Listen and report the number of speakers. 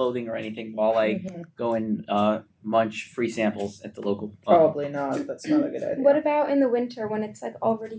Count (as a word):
three